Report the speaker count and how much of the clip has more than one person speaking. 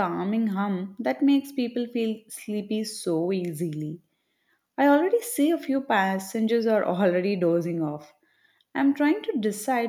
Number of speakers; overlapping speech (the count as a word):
one, no overlap